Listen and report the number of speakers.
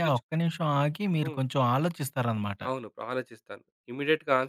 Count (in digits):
2